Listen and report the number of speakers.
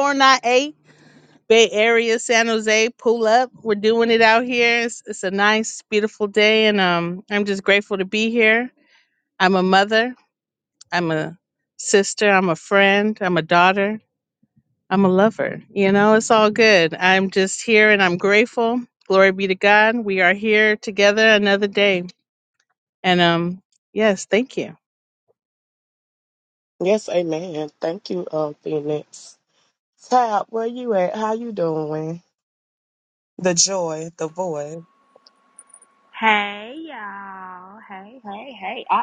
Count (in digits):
3